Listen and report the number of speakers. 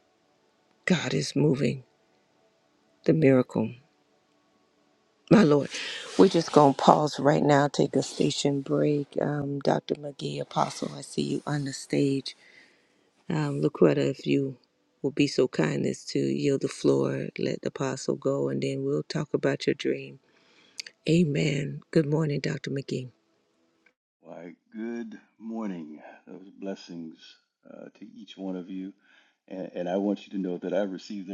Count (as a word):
two